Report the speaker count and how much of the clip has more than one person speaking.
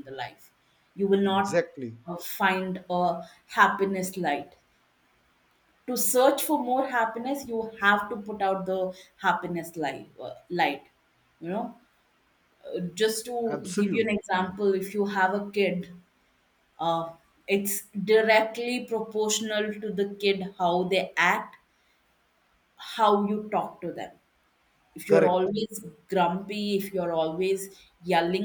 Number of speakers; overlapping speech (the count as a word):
two, about 4%